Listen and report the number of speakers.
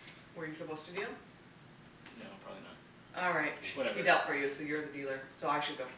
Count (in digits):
2